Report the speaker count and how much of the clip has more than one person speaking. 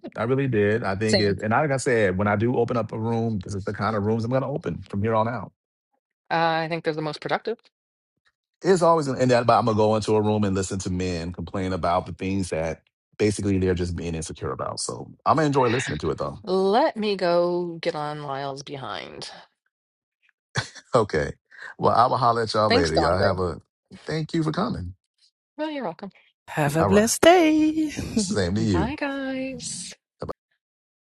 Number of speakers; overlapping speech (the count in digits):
3, about 5%